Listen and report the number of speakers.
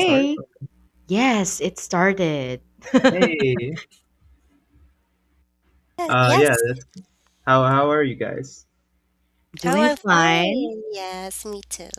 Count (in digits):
3